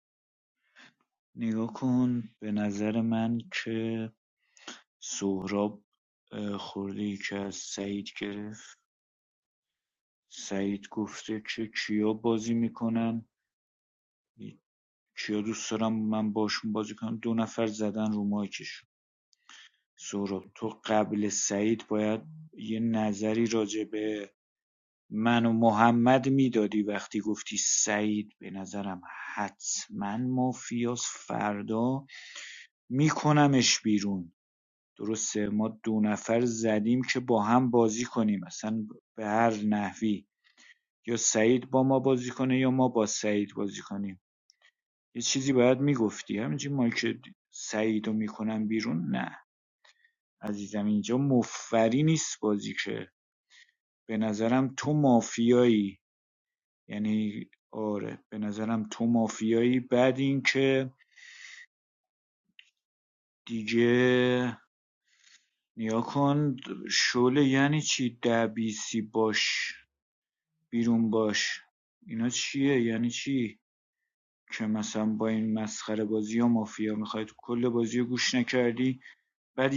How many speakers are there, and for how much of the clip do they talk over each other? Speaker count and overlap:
1, no overlap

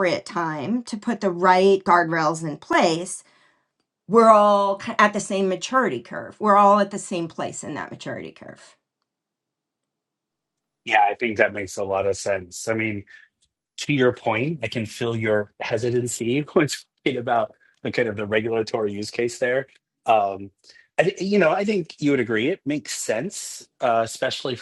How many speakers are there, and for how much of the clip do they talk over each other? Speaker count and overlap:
2, no overlap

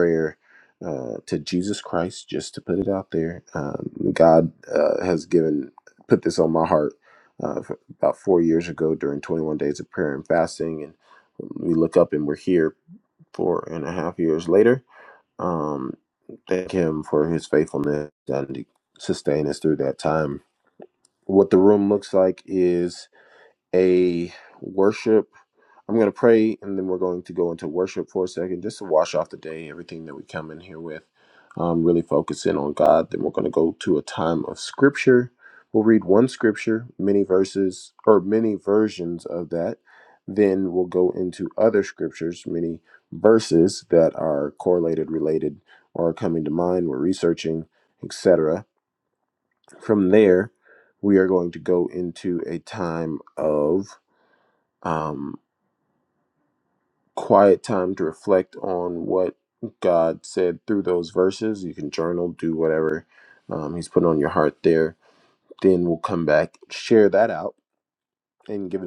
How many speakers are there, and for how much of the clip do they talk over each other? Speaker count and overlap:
1, no overlap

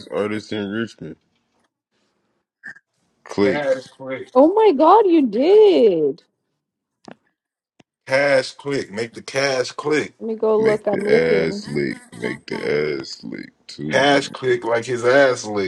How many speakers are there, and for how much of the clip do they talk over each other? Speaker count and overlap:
3, about 9%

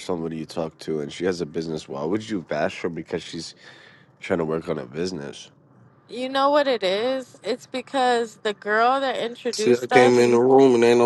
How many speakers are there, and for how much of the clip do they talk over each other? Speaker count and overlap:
3, about 6%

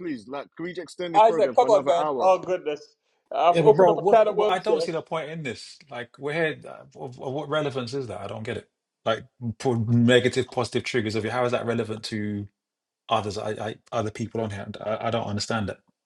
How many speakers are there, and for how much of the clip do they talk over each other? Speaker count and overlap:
3, about 16%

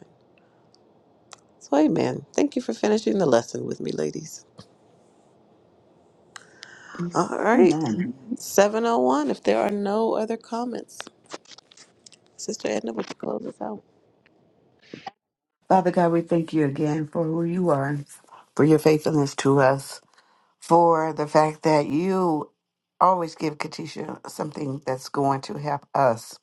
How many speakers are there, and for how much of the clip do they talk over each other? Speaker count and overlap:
2, about 1%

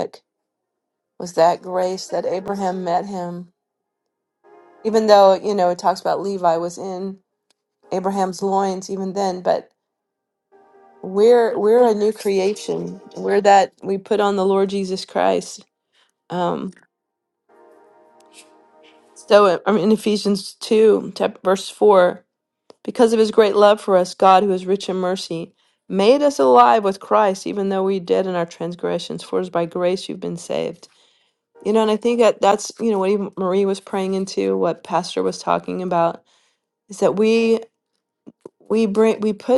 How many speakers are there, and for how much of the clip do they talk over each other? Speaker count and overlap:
1, no overlap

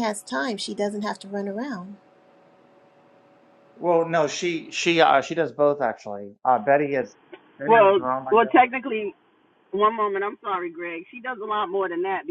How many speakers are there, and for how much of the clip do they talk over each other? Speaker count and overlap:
3, about 7%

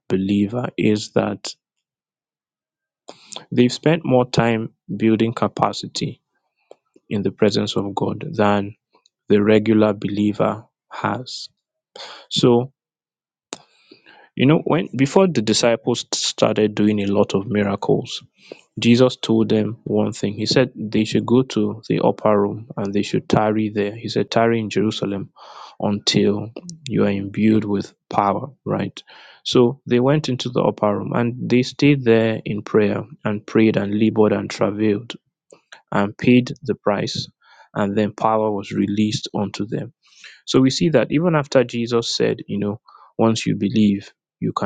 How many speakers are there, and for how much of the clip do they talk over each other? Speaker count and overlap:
1, no overlap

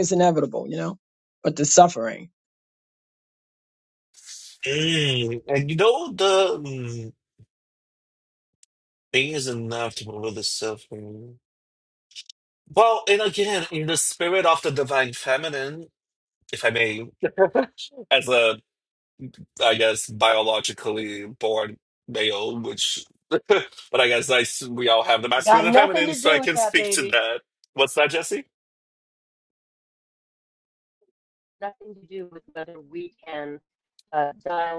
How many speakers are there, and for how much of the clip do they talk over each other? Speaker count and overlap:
3, about 5%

